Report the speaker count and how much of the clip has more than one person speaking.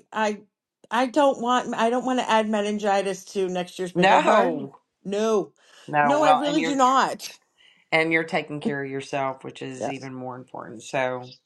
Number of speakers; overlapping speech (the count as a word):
two, about 13%